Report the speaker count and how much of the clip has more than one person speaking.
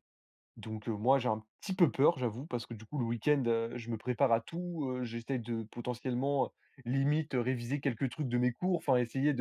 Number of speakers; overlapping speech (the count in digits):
1, no overlap